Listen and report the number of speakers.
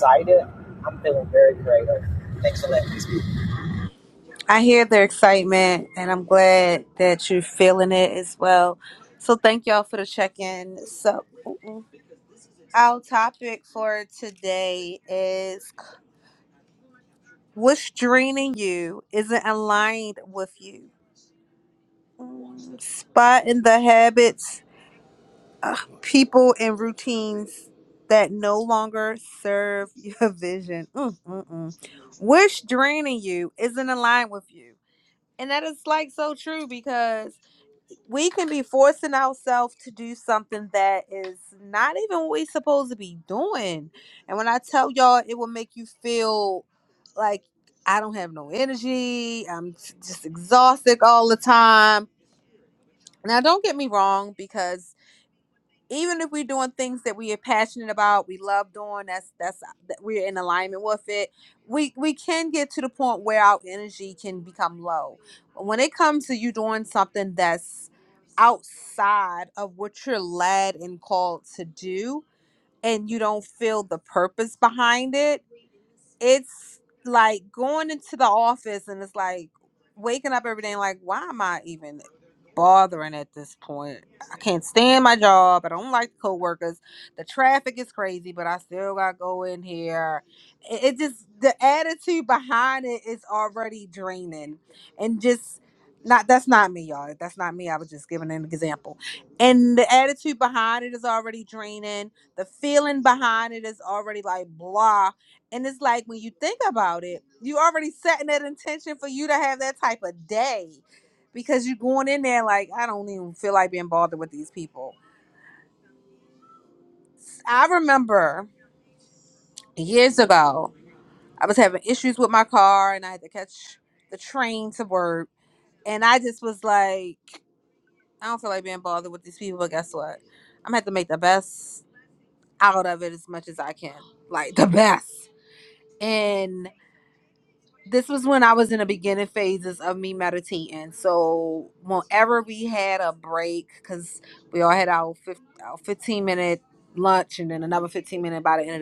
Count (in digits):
2